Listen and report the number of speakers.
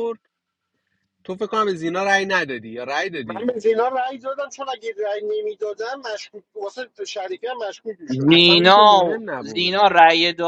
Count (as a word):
three